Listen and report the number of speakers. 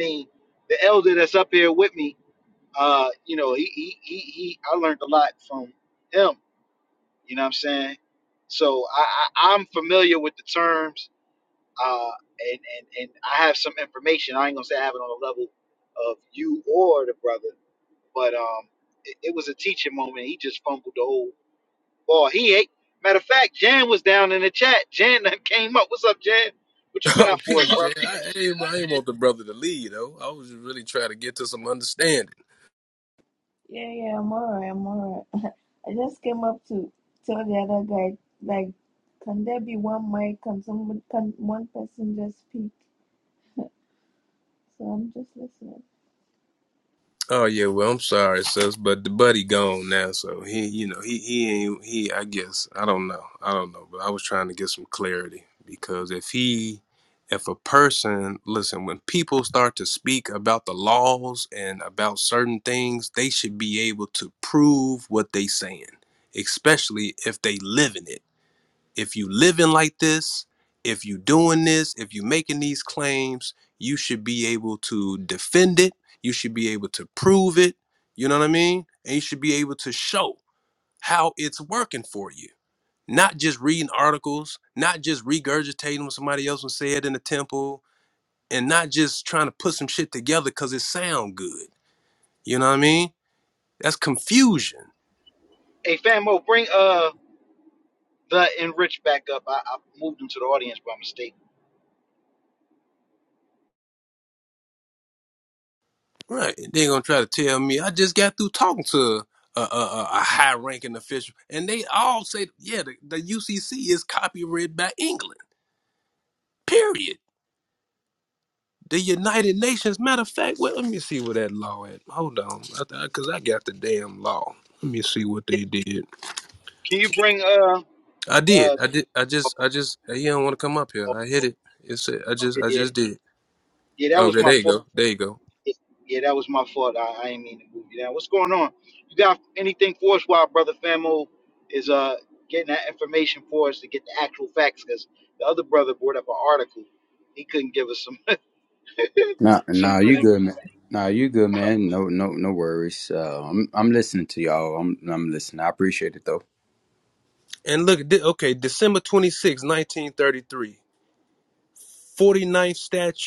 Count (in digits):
4